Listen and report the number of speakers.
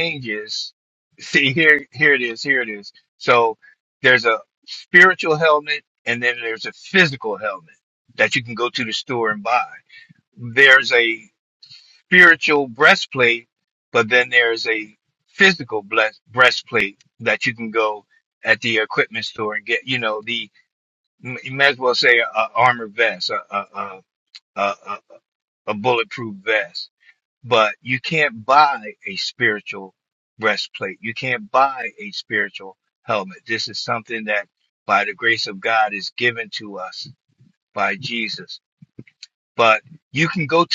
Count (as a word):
one